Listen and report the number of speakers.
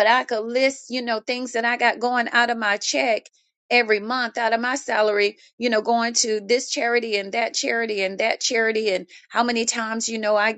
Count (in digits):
1